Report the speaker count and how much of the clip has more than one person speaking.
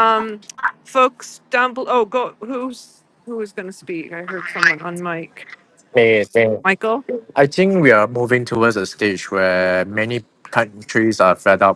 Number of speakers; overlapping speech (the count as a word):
two, no overlap